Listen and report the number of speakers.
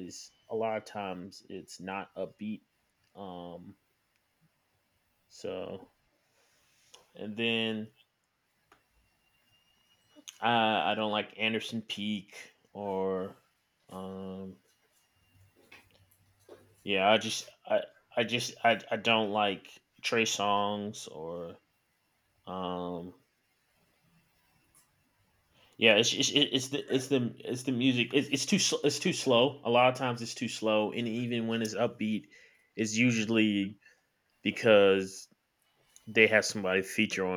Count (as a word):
one